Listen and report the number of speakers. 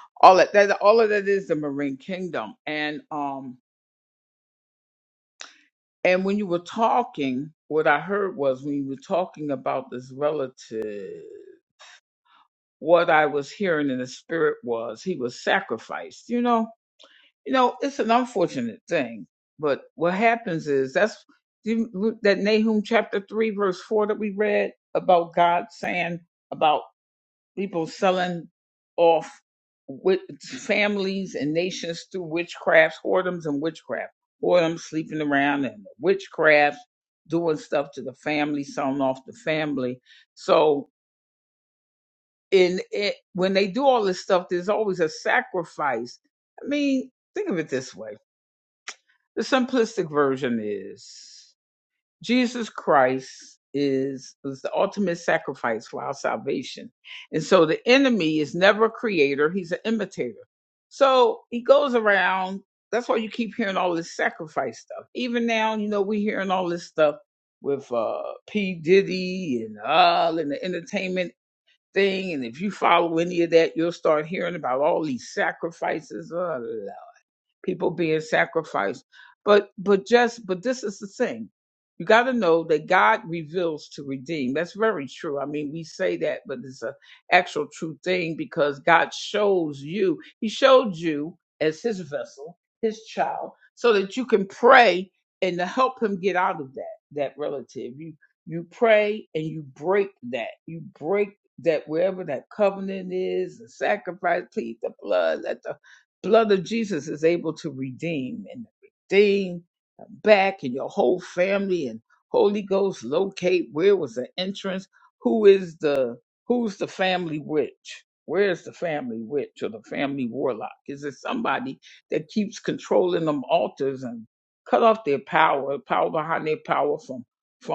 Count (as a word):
one